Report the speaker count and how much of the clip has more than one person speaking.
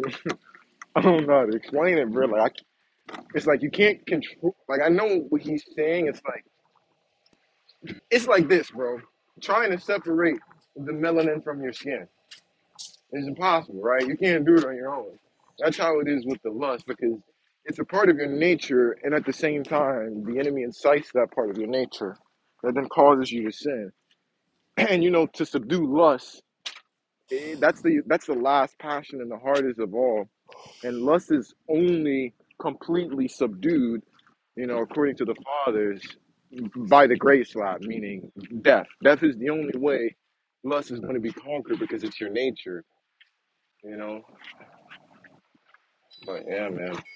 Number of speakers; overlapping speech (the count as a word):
one, no overlap